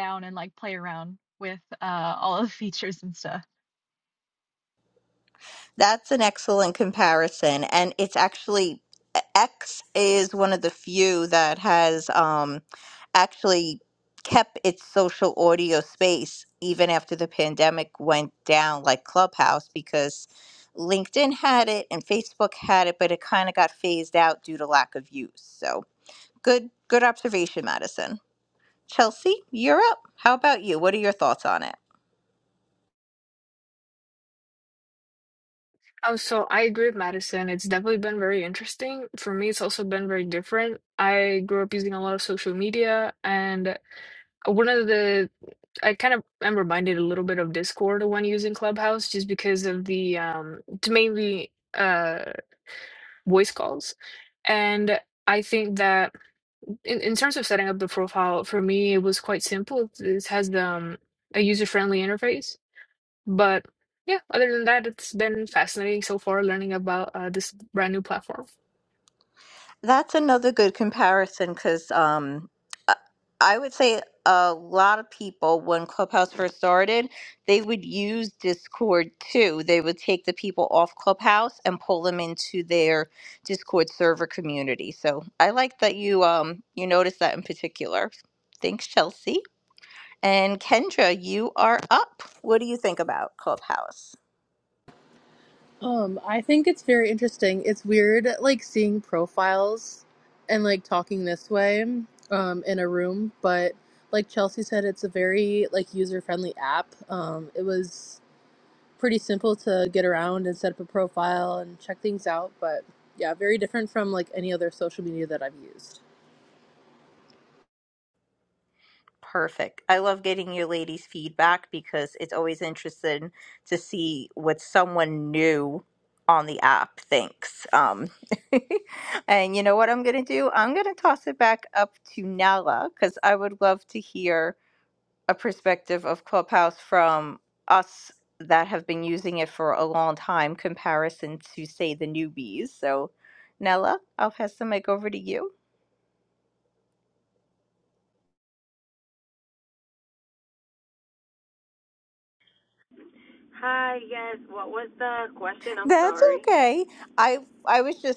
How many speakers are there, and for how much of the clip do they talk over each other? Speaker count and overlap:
5, under 1%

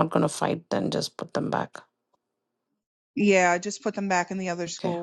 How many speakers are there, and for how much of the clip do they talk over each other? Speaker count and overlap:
2, about 6%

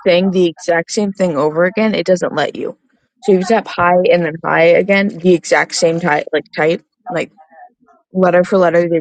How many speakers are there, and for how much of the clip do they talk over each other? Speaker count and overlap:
1, no overlap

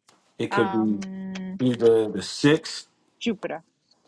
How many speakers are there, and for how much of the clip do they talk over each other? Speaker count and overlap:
2, about 12%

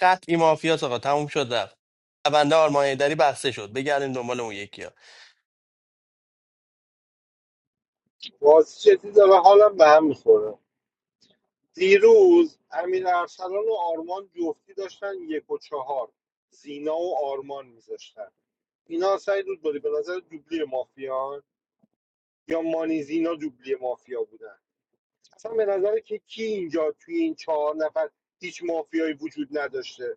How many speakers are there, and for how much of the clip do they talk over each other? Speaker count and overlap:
2, no overlap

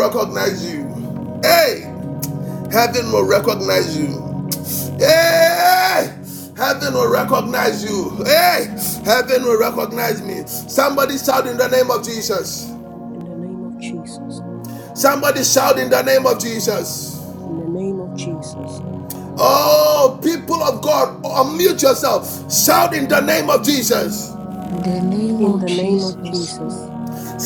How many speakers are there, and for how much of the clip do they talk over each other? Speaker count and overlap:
3, about 4%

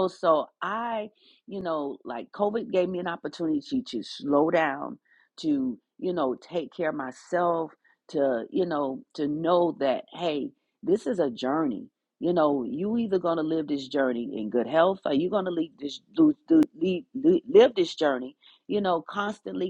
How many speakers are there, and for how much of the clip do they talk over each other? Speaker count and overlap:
1, no overlap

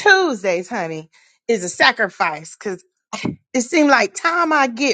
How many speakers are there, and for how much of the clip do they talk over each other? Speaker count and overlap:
1, no overlap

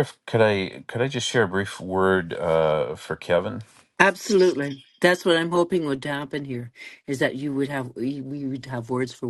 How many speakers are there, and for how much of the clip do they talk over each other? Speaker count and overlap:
2, no overlap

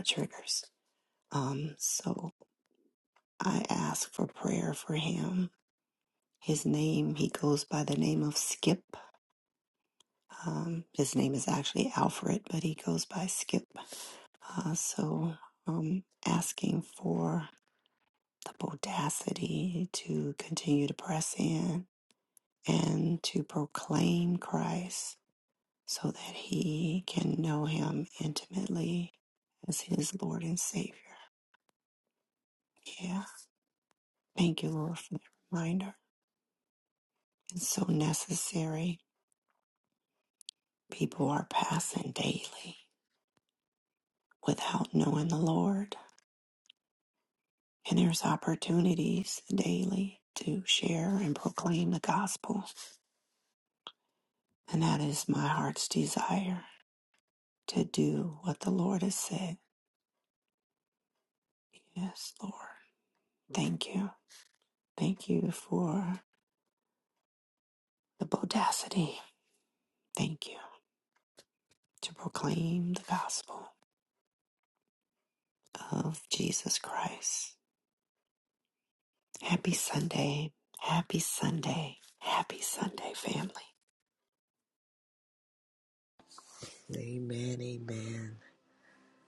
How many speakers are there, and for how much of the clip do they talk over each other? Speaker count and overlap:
2, no overlap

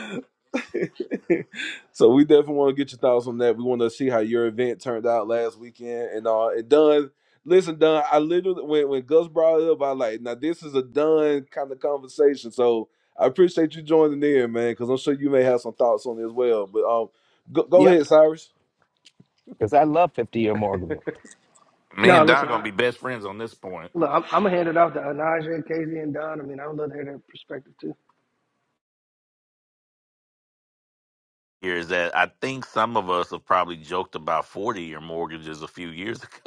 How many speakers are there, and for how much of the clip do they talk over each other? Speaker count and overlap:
4, about 2%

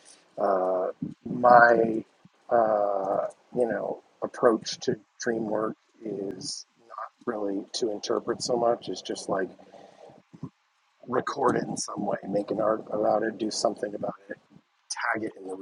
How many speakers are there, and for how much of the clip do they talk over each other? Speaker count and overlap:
1, no overlap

